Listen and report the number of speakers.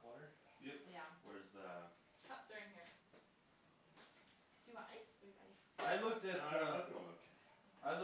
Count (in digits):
3